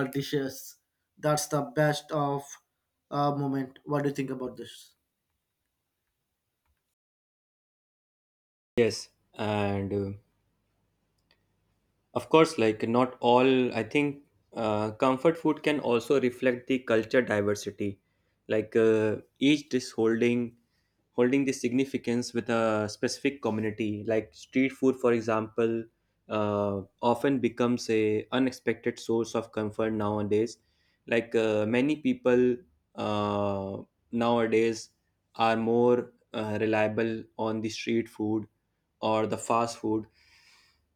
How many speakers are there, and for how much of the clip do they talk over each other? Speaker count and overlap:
two, no overlap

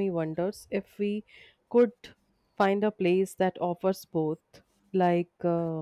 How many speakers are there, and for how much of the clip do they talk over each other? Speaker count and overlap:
one, no overlap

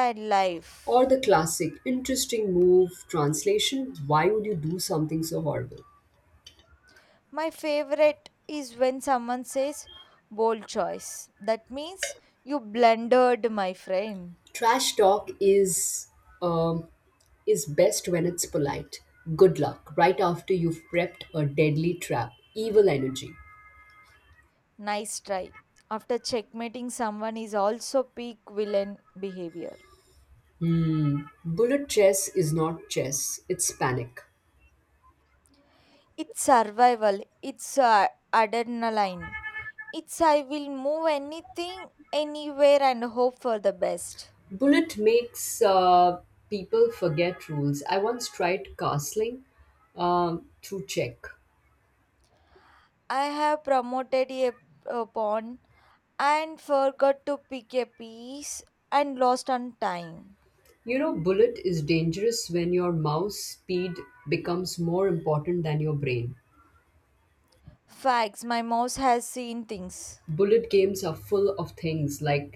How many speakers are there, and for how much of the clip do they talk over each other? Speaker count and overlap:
two, no overlap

